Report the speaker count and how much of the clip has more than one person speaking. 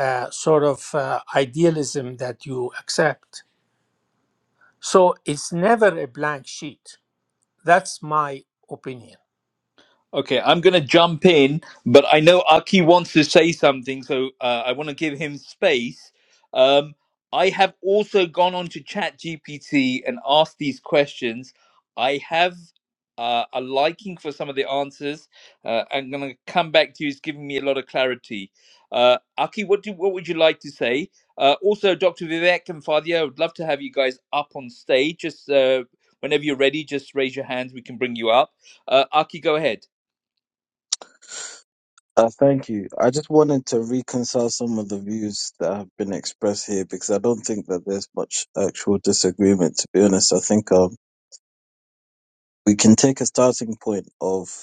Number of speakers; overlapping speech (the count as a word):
three, no overlap